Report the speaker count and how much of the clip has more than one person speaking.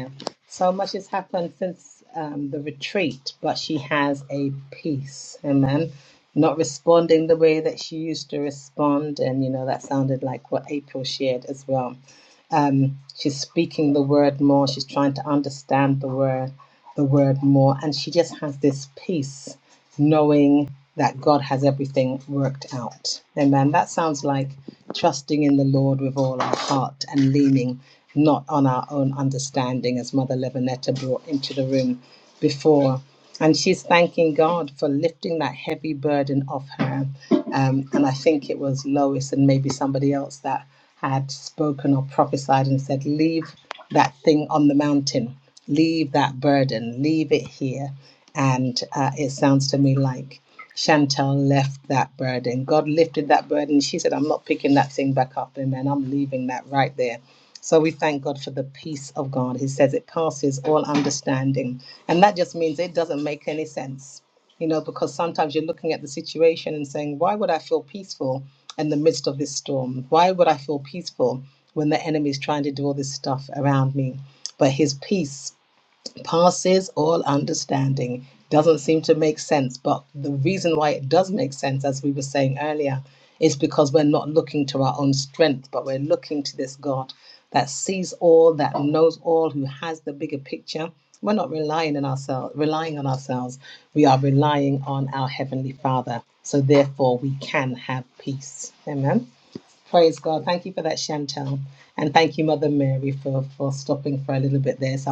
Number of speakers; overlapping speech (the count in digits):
1, no overlap